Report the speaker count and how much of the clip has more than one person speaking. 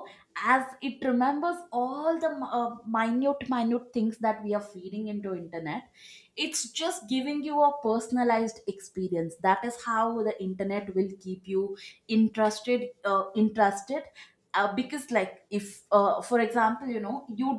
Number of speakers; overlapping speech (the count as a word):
one, no overlap